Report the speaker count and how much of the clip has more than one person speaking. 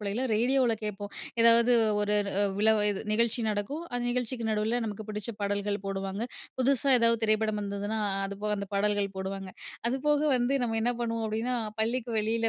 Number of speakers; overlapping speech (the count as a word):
one, no overlap